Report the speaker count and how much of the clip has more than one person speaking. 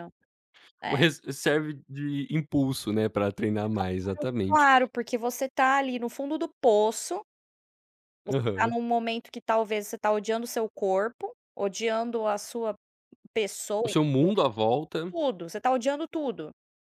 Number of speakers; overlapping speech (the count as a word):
two, about 8%